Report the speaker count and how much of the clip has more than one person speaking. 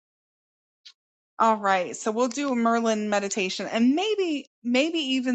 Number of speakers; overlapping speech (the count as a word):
one, no overlap